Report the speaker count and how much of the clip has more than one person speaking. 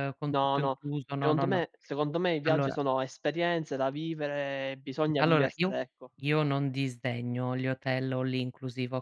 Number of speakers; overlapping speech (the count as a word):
two, about 20%